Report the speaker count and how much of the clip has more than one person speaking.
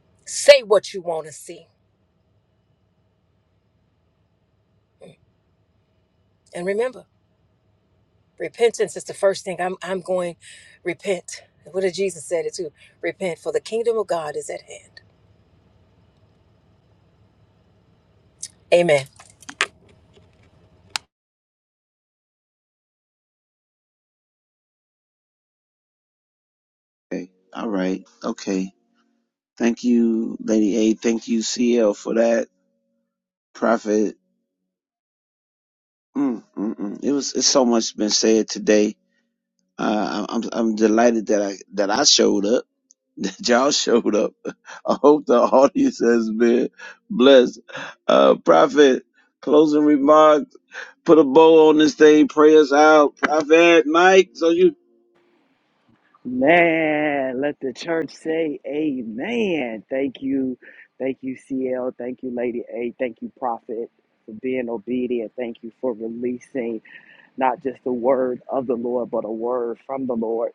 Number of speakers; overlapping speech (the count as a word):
three, no overlap